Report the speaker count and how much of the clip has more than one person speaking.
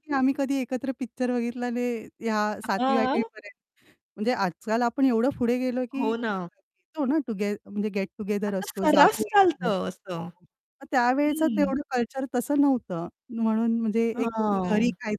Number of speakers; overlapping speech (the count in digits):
2, about 20%